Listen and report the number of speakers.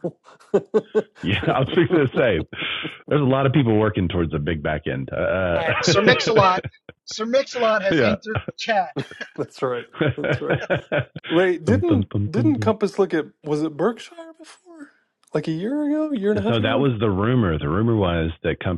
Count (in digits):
3